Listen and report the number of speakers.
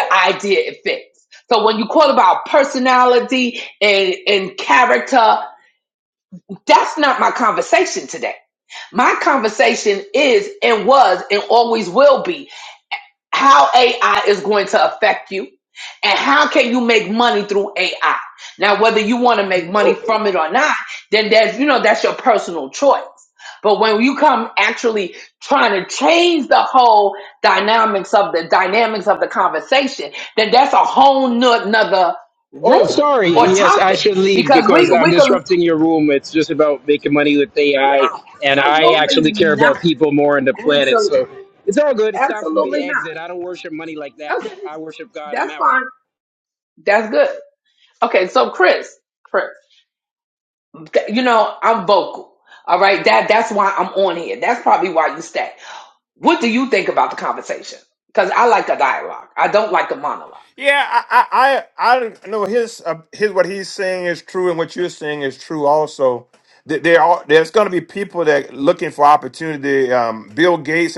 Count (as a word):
three